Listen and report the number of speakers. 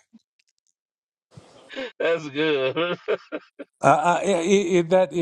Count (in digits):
2